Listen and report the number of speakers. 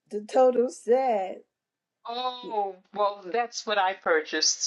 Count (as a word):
two